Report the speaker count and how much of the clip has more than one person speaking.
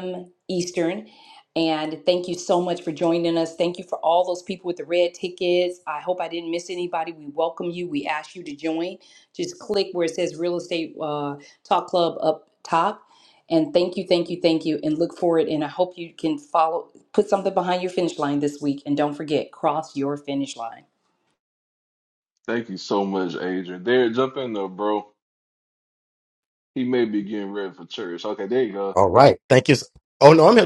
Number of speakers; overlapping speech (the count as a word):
three, no overlap